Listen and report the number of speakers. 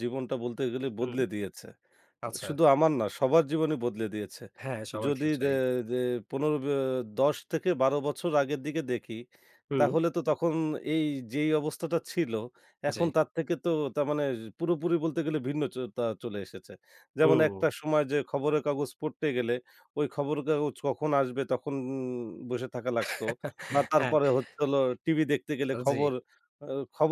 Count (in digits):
2